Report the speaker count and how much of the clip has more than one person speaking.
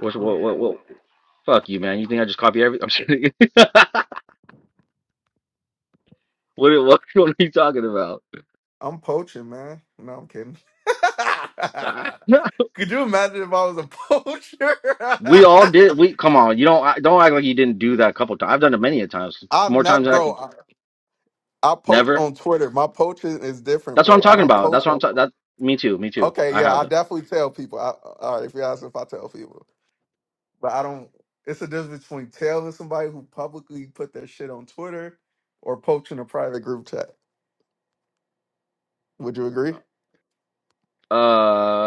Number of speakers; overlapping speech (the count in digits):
2, about 7%